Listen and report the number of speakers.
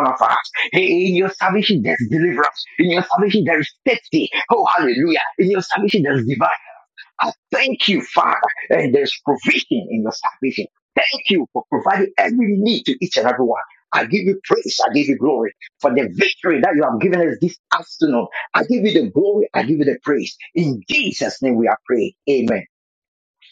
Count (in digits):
1